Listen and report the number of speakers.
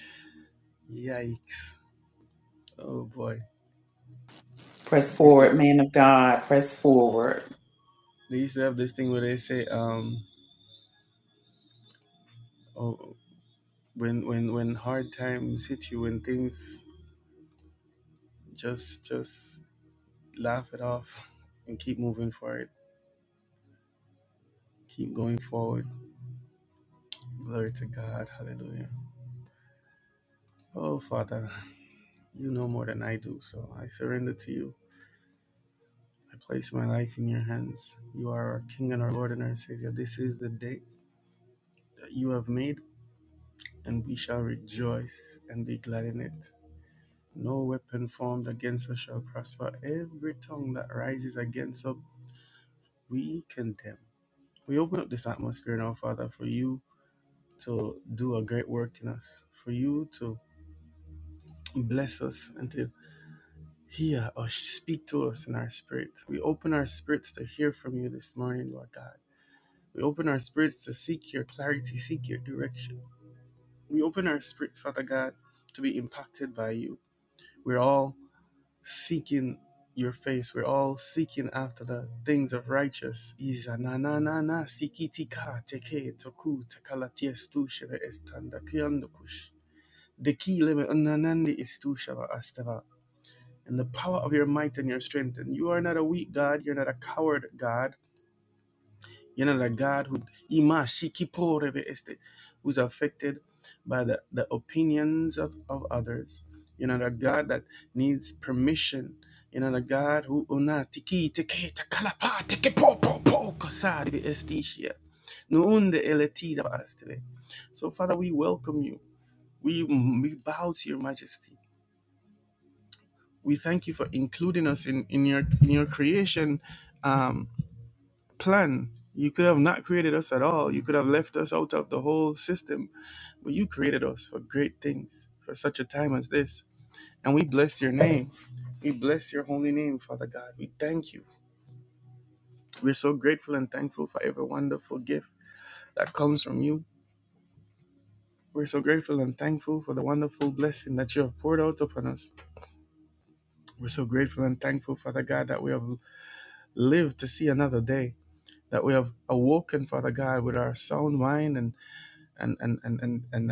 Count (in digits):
2